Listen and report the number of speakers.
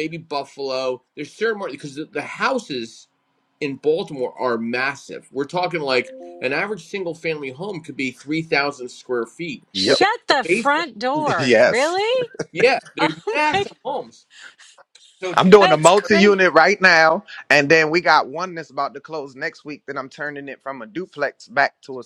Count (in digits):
3